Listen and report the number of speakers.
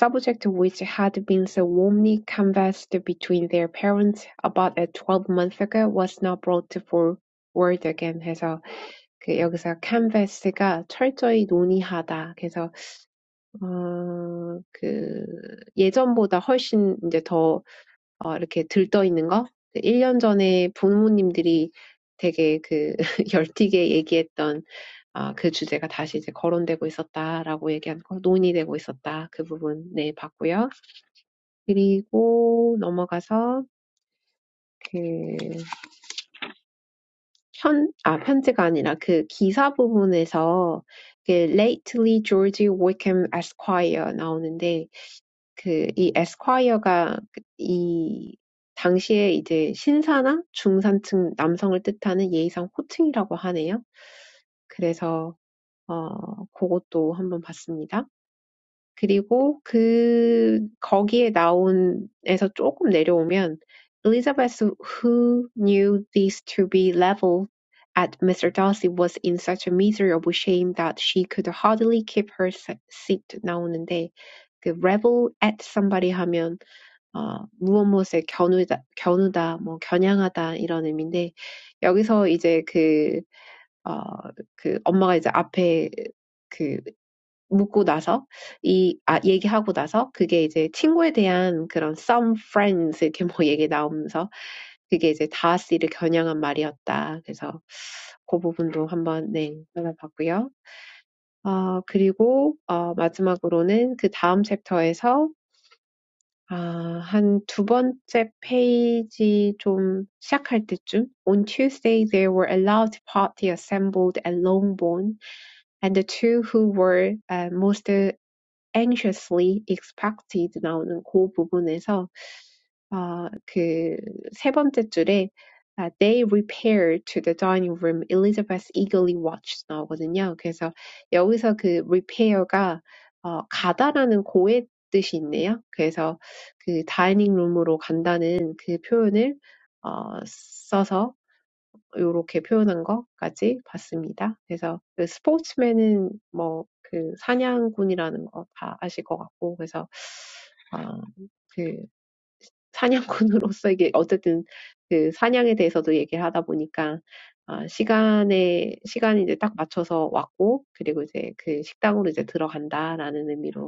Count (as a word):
one